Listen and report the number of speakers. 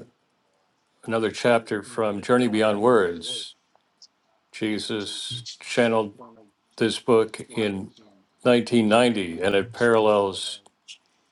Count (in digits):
1